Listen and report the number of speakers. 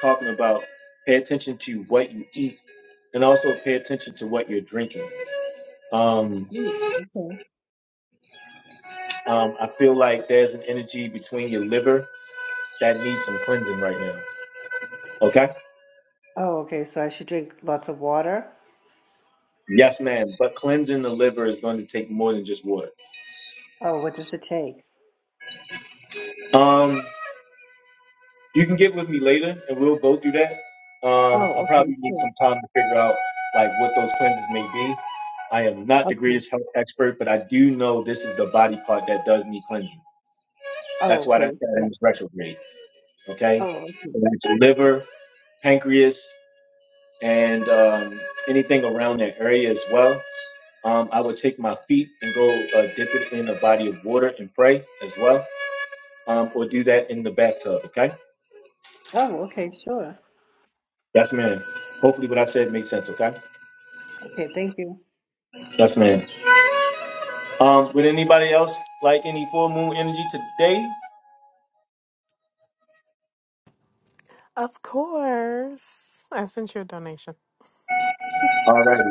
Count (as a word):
three